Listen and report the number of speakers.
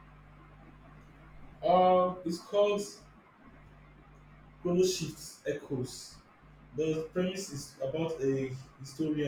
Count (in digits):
1